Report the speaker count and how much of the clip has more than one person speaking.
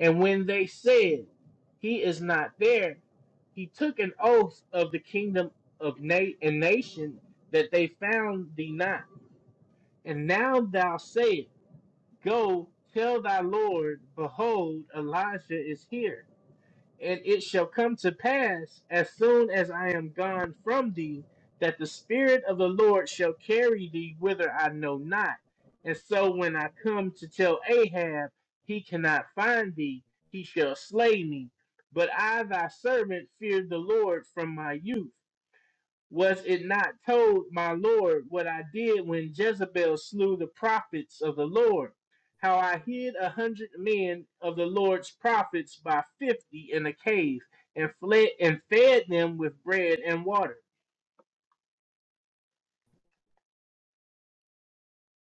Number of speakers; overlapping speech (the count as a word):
one, no overlap